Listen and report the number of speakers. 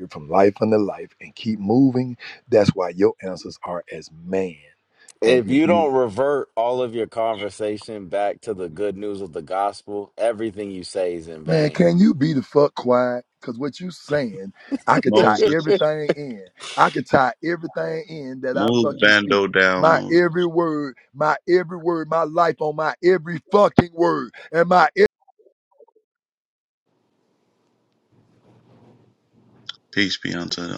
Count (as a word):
three